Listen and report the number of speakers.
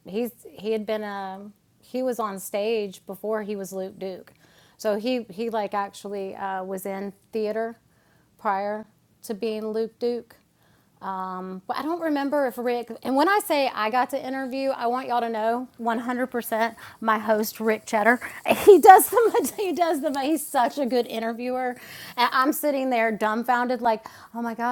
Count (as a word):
one